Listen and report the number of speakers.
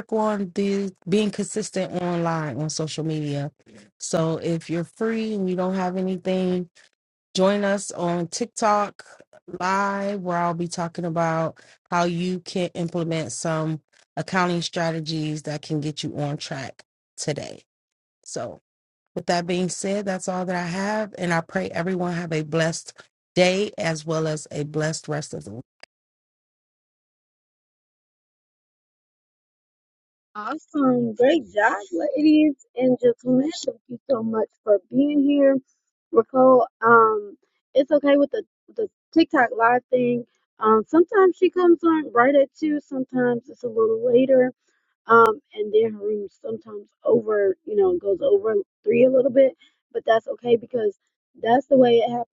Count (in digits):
2